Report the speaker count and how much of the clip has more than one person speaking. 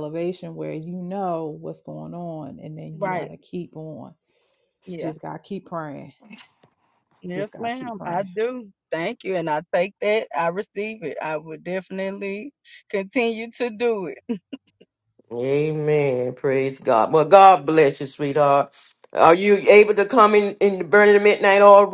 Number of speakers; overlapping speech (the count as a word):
three, about 6%